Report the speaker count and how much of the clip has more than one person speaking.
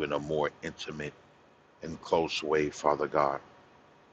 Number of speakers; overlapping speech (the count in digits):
1, no overlap